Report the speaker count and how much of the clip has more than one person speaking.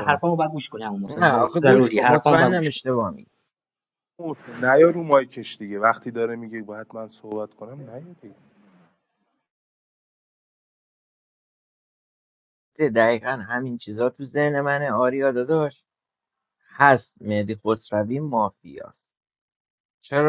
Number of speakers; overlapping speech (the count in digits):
3, about 9%